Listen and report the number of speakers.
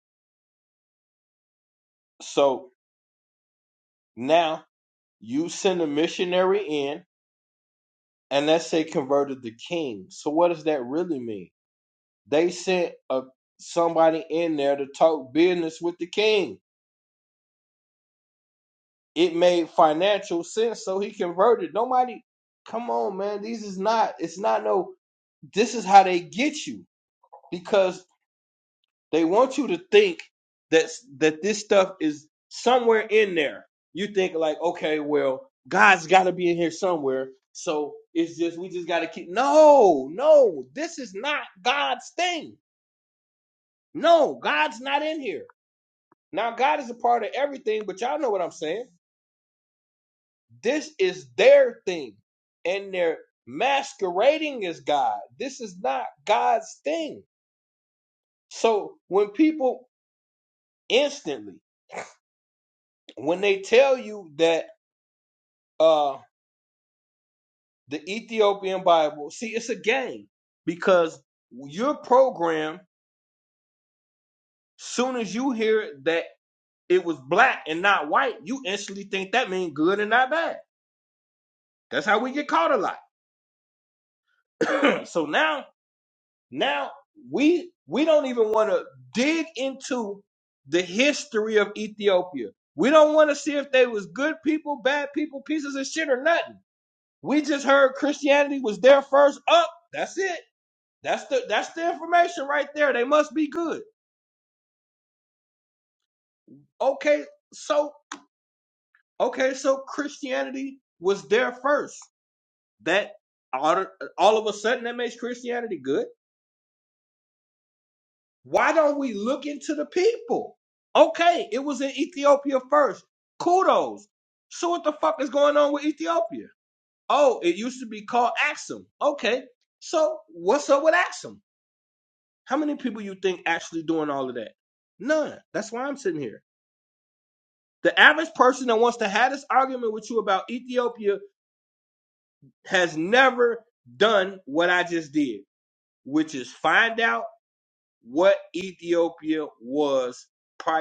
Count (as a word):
one